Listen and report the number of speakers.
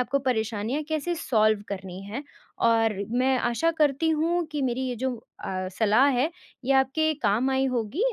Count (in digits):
1